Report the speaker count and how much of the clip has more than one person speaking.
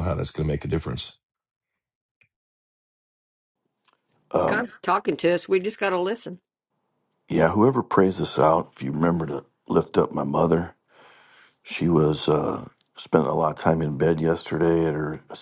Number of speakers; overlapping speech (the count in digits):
3, about 2%